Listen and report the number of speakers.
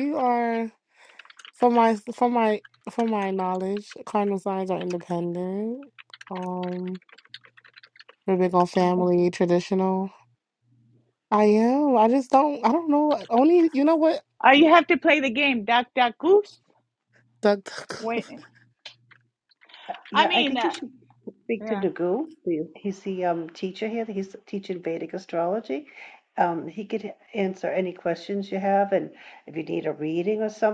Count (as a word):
three